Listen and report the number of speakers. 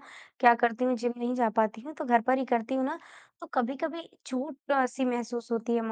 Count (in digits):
1